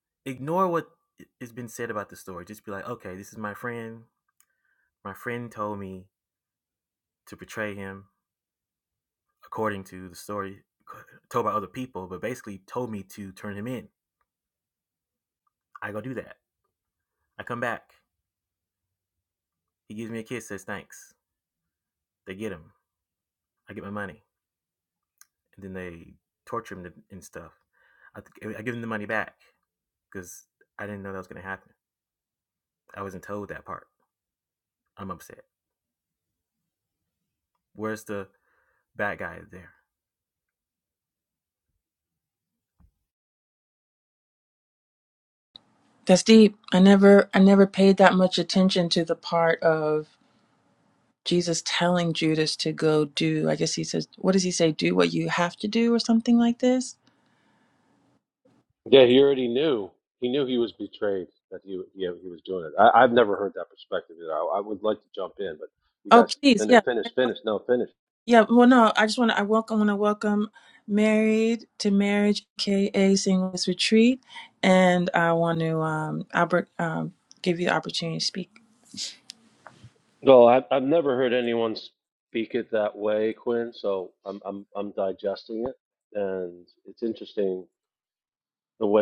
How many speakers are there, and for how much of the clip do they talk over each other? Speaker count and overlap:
3, about 1%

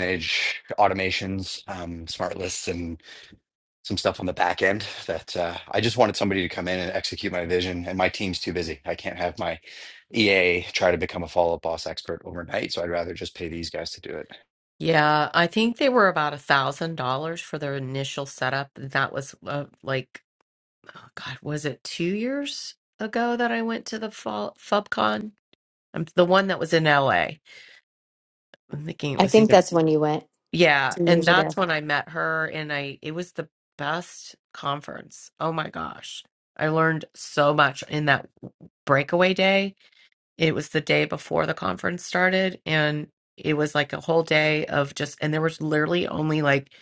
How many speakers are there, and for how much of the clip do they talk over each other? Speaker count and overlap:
3, about 2%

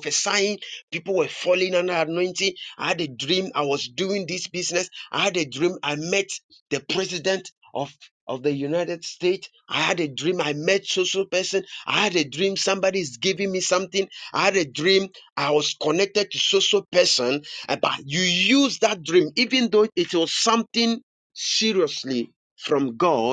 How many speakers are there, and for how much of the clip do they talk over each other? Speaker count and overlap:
1, no overlap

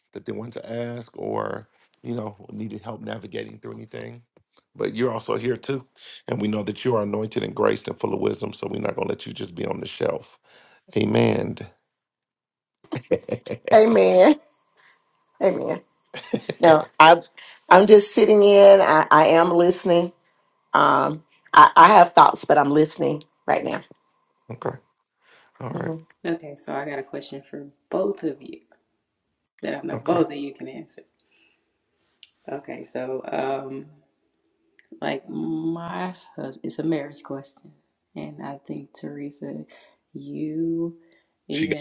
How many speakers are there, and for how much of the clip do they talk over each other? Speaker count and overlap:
3, about 2%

